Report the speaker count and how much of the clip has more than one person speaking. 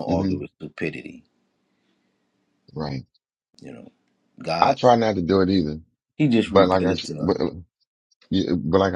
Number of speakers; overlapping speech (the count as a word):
two, about 15%